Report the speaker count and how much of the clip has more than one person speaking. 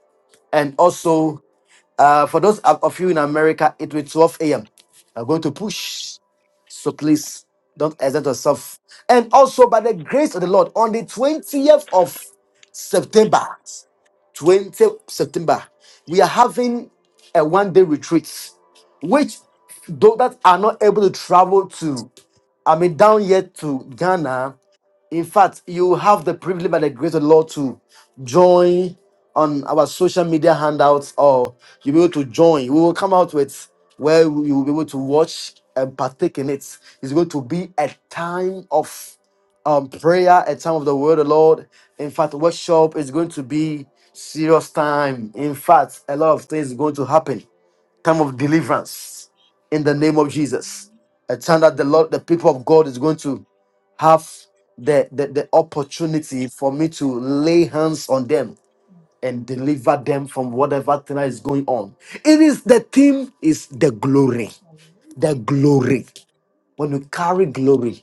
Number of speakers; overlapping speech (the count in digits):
1, no overlap